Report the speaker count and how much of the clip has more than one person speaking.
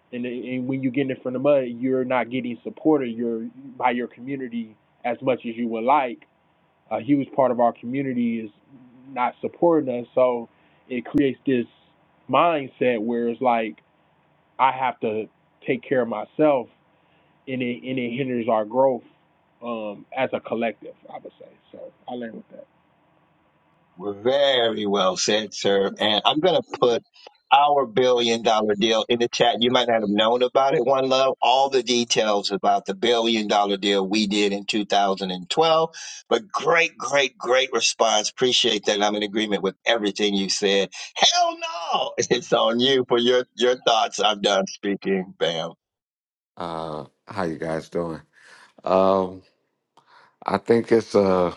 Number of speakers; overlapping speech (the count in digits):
3, no overlap